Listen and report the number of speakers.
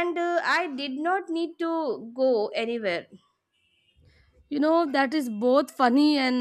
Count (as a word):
two